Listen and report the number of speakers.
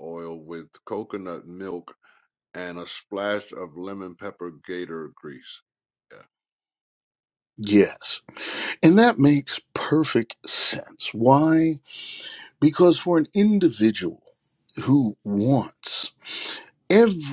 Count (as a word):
two